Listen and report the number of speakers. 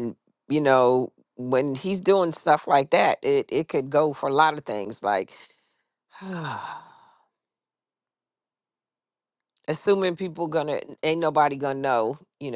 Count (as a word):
one